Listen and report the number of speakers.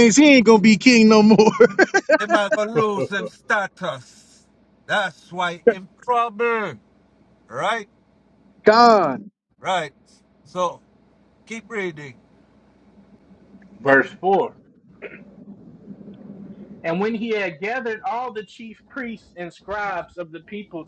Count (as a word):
three